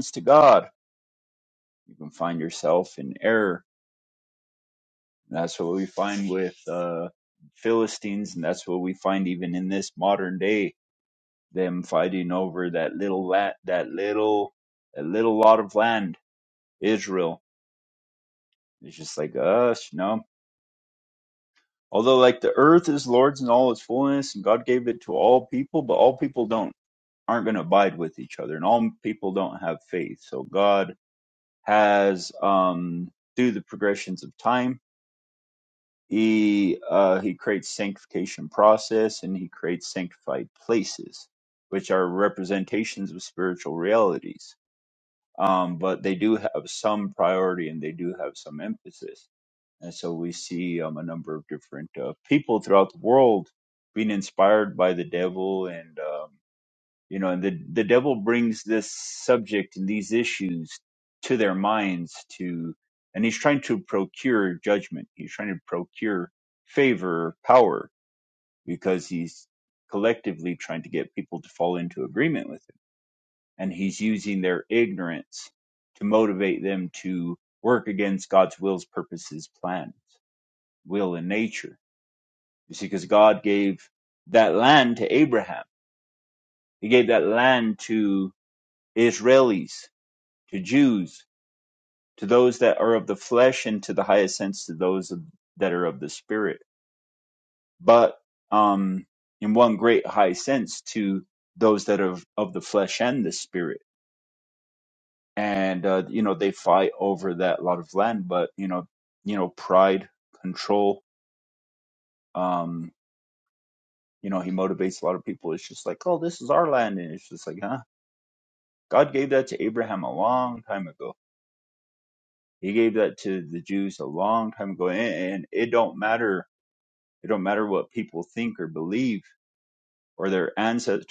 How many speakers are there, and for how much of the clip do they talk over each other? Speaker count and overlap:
1, no overlap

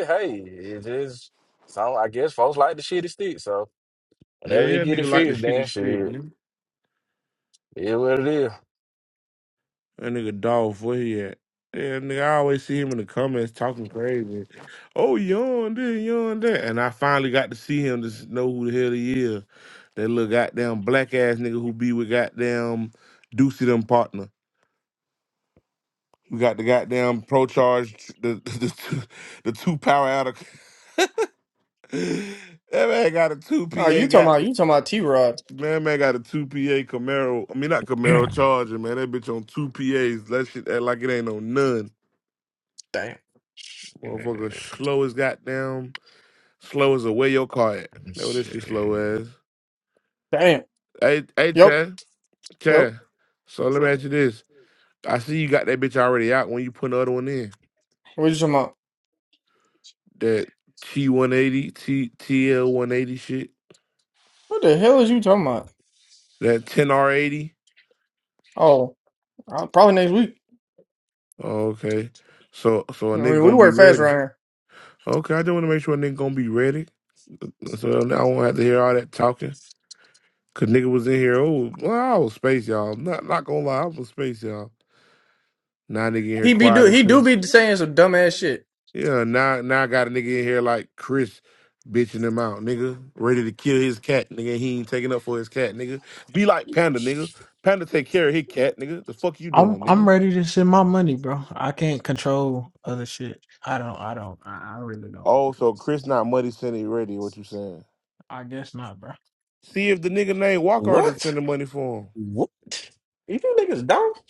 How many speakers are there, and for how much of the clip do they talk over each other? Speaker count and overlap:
5, about 6%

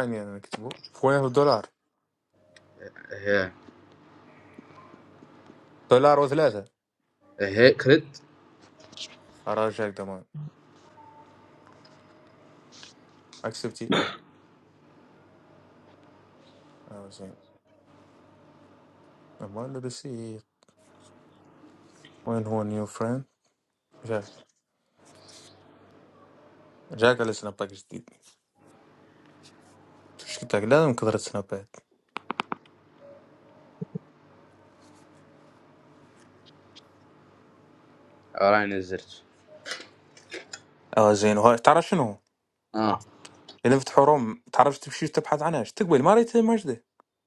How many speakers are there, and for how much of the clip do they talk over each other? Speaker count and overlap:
2, no overlap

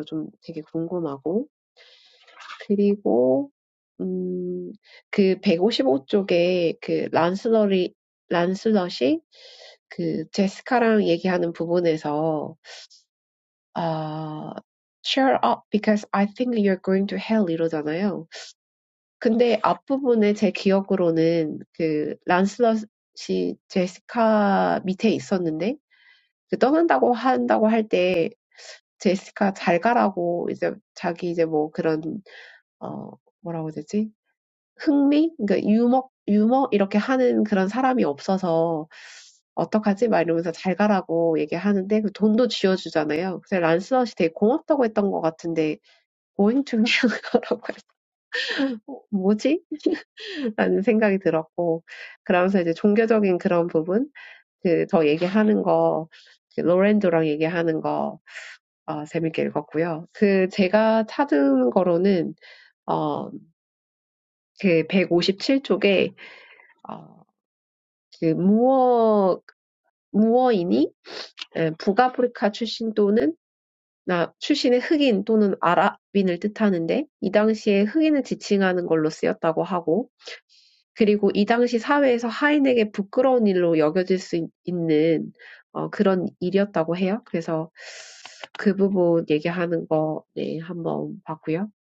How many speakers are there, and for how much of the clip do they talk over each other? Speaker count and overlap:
1, no overlap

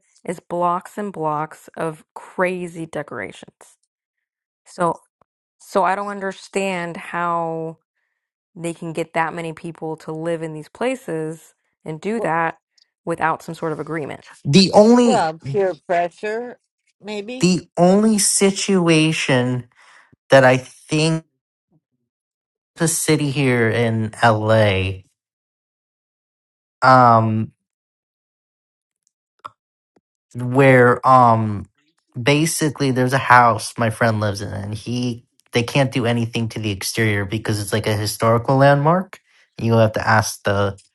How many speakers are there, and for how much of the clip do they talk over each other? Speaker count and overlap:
3, about 1%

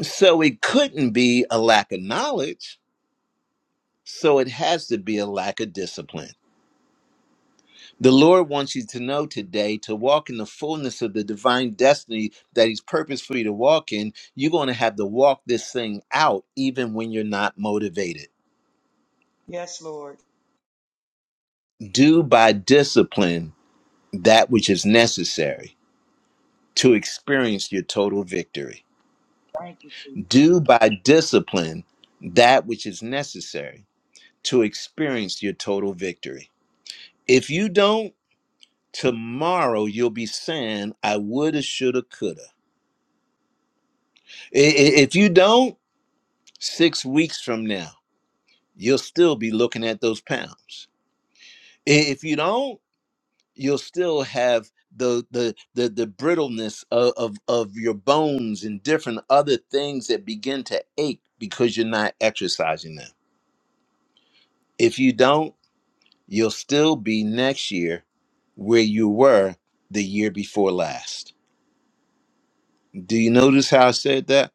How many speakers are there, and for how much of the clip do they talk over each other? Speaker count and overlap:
2, no overlap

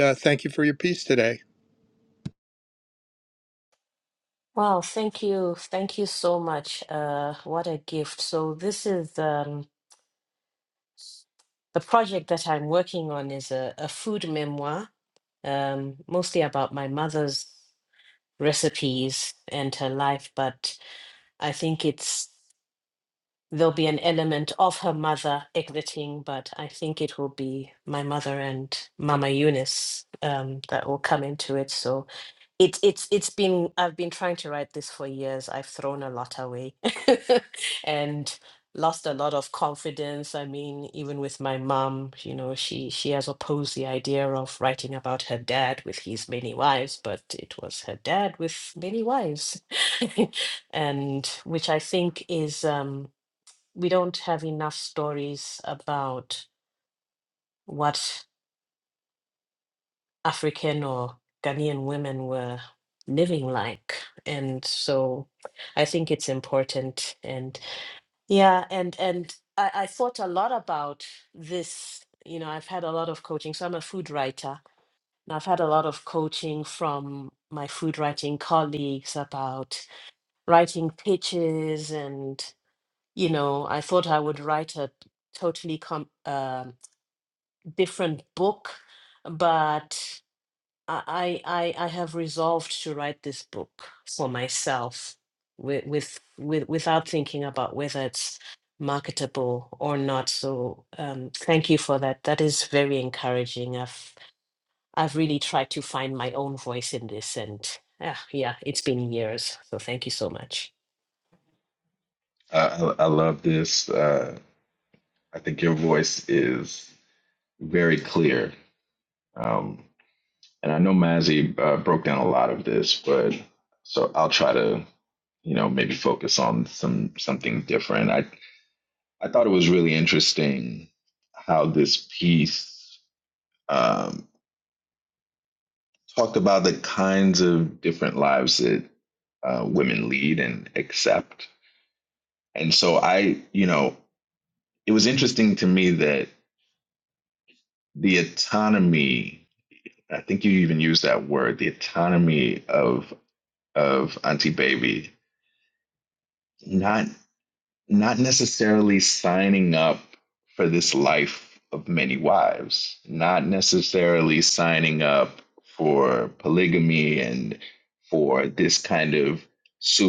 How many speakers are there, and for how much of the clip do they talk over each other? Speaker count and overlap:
3, no overlap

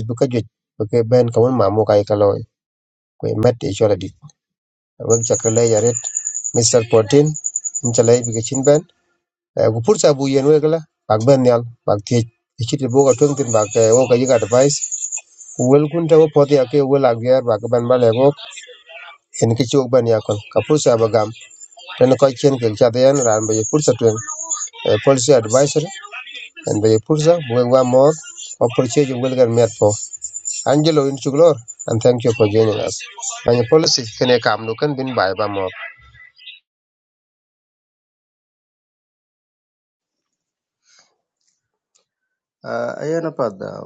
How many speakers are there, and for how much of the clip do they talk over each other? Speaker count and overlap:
2, no overlap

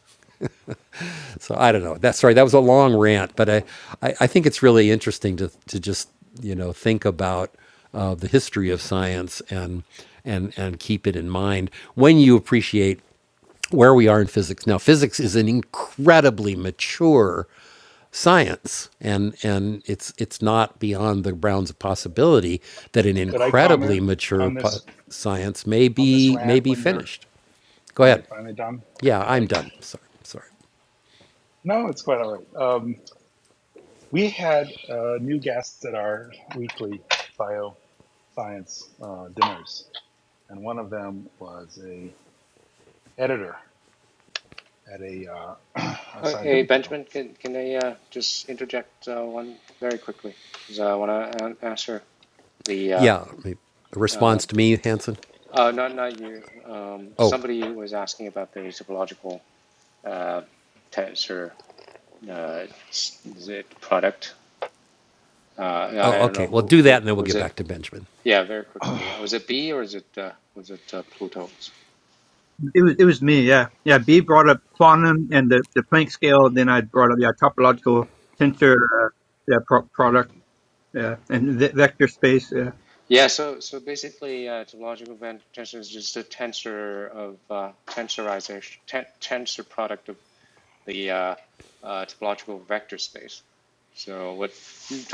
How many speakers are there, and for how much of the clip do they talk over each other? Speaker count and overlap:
4, about 6%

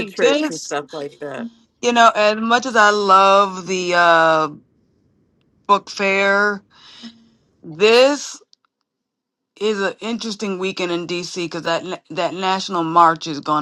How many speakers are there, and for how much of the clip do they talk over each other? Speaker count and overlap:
2, about 4%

